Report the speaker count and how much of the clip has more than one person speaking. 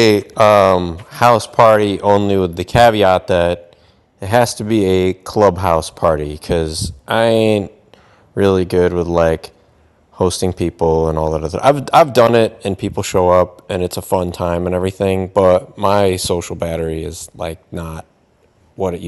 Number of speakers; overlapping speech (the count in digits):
1, no overlap